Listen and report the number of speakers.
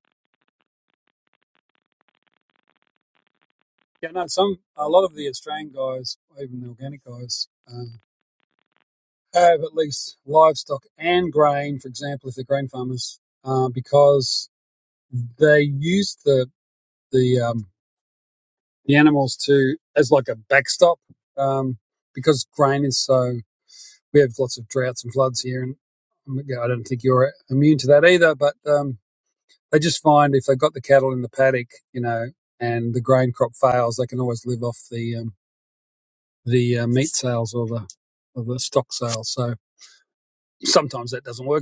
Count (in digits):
1